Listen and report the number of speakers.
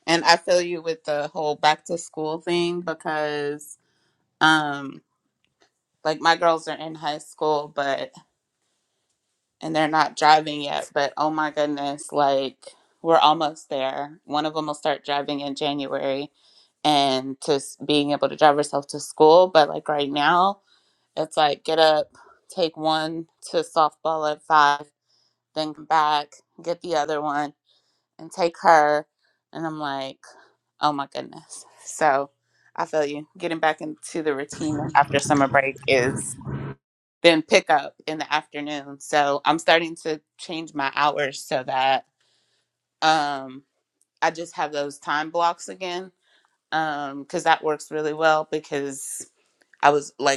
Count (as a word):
one